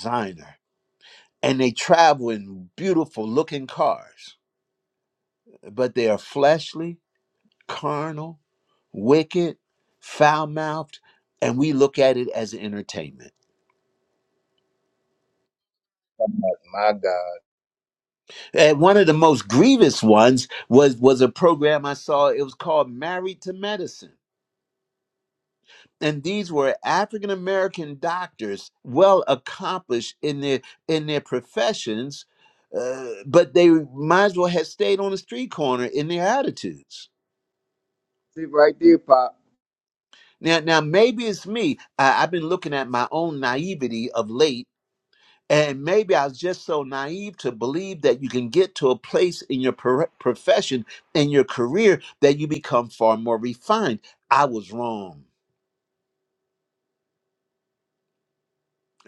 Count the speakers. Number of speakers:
2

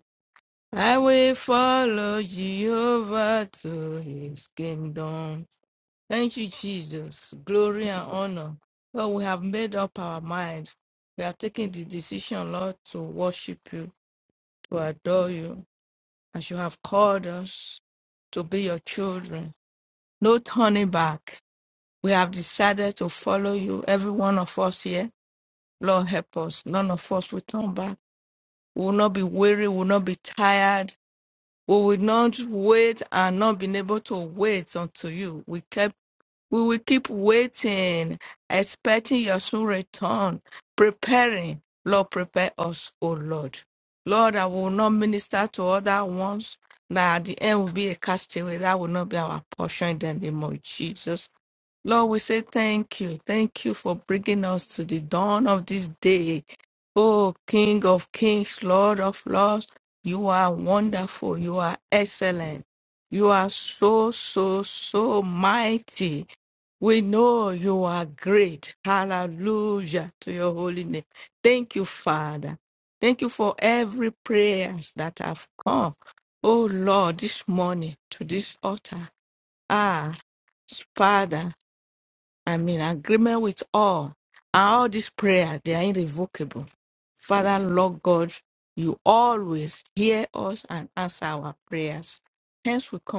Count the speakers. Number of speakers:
1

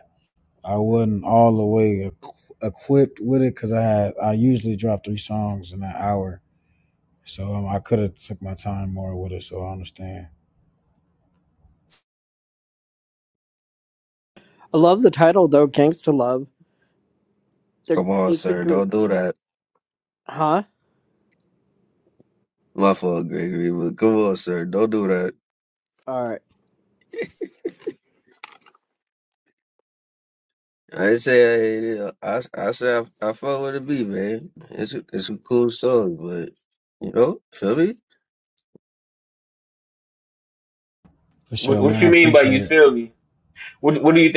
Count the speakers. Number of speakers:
4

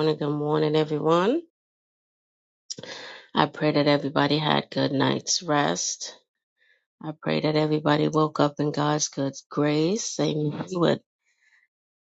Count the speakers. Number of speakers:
1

